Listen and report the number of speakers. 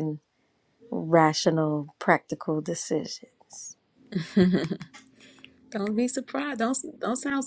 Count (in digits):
2